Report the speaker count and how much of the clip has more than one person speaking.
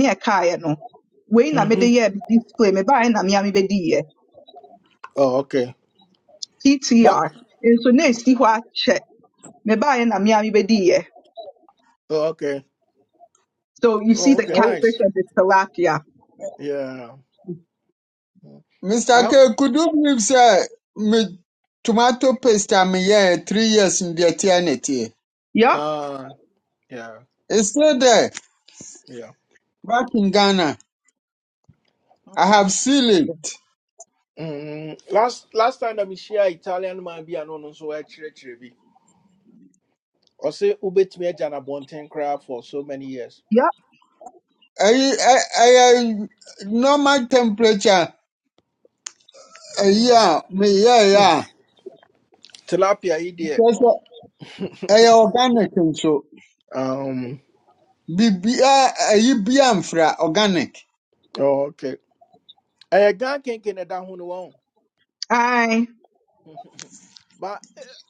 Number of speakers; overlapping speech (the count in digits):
3, about 3%